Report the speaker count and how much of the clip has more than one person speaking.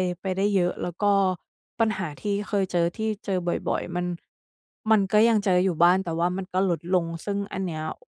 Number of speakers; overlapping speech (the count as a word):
one, no overlap